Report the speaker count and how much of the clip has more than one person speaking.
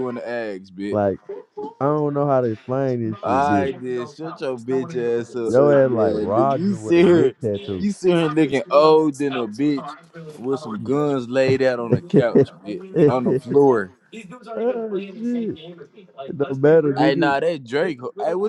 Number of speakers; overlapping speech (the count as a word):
two, about 15%